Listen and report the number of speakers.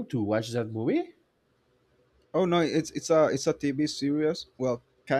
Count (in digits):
2